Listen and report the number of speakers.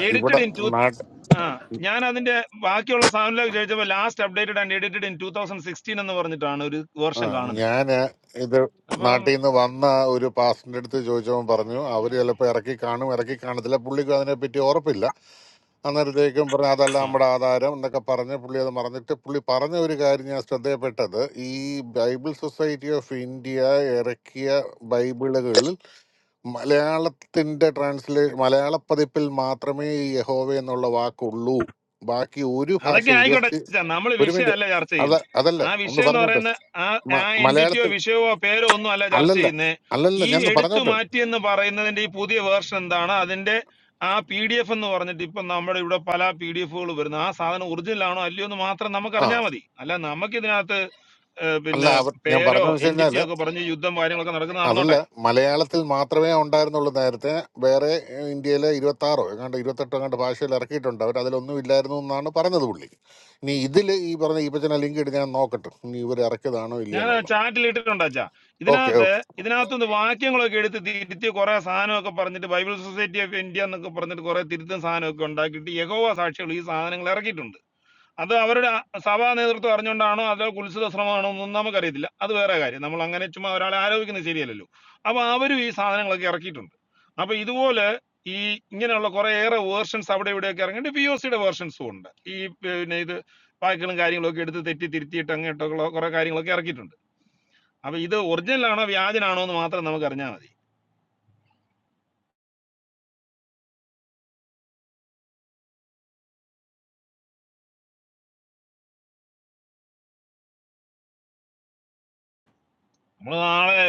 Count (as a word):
two